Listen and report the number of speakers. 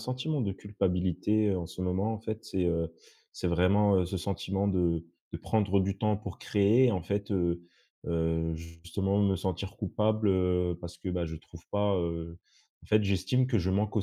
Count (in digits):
1